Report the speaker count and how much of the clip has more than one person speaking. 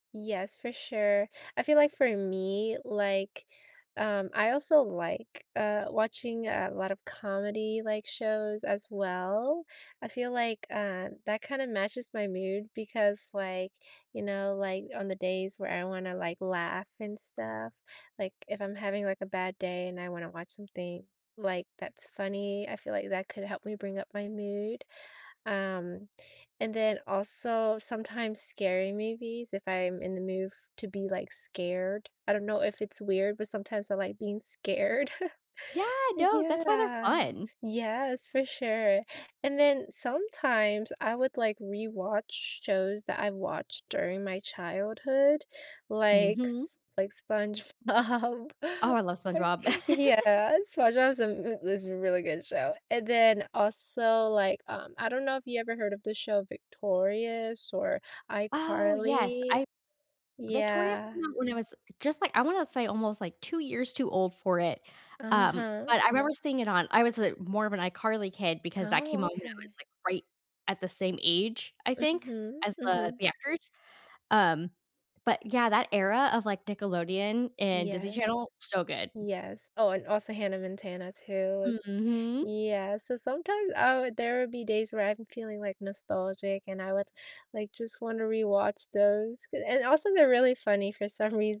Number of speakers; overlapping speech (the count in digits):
2, about 6%